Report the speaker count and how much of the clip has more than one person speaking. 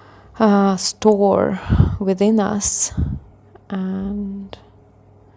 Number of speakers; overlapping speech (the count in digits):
1, no overlap